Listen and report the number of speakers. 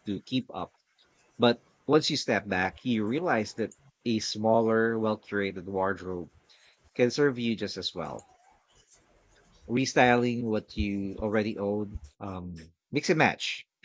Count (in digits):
1